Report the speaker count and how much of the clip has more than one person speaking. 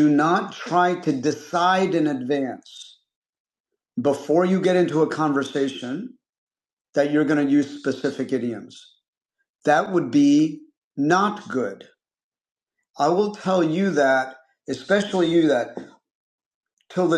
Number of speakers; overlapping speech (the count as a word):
one, no overlap